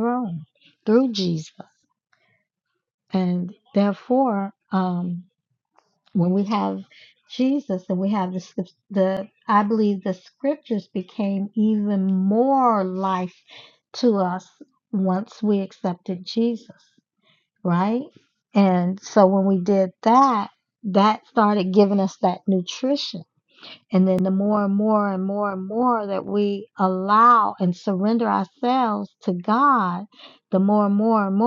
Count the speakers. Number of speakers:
1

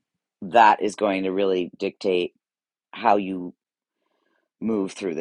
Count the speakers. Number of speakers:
1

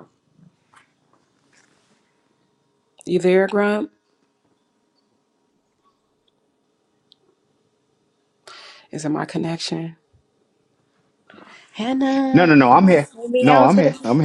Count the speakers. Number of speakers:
2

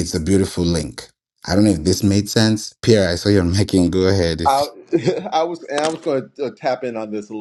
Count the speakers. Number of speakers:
2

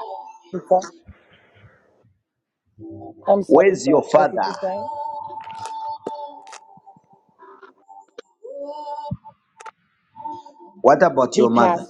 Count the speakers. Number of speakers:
2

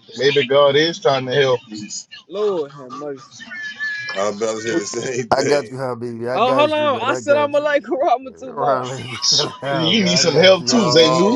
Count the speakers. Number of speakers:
4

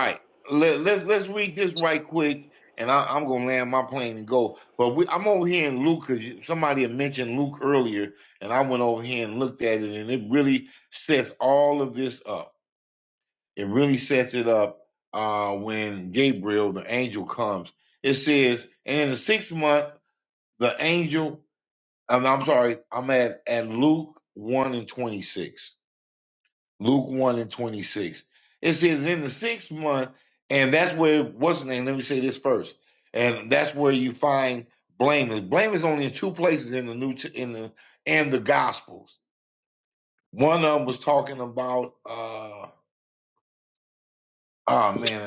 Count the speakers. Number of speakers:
1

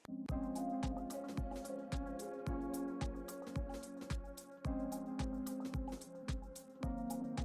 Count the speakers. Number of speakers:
0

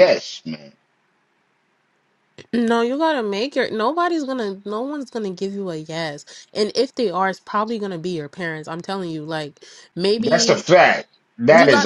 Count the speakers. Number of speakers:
2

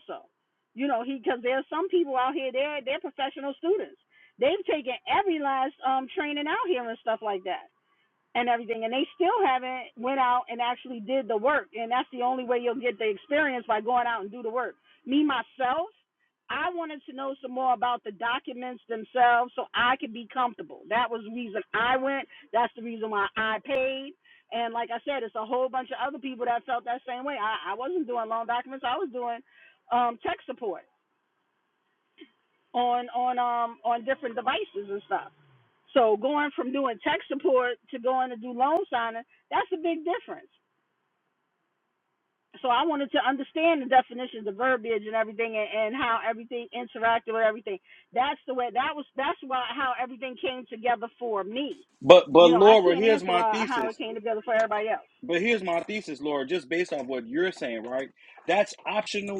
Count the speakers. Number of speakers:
2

